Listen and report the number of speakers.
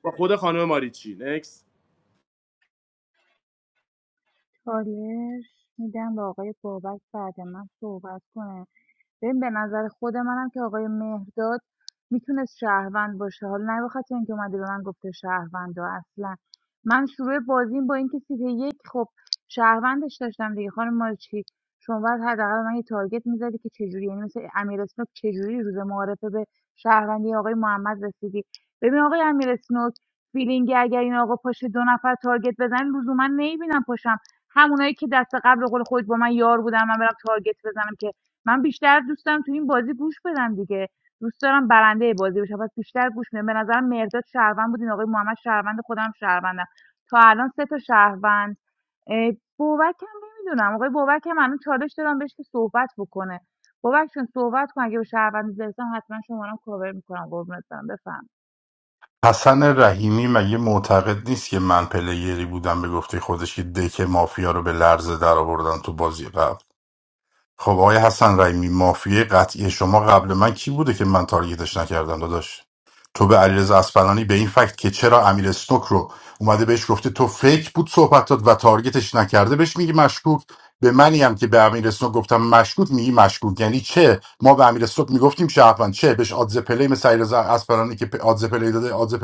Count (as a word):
three